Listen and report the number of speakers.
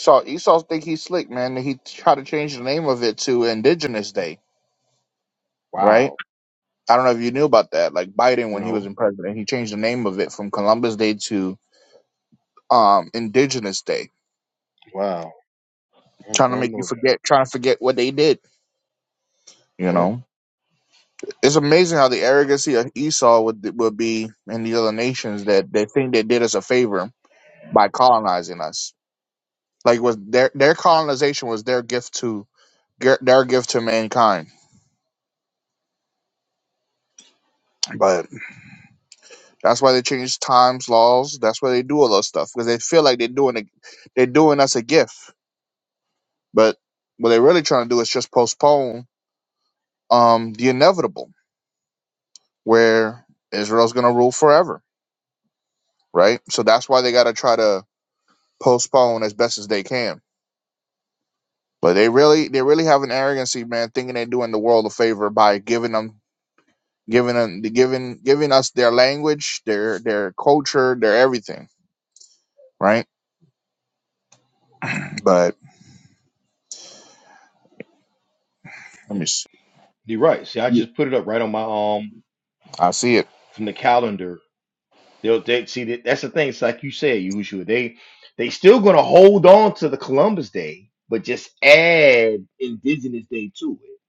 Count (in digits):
3